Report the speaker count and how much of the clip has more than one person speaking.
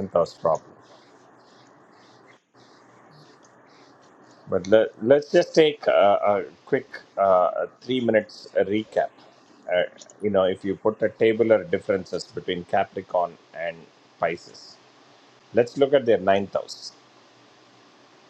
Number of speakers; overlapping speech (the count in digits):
1, no overlap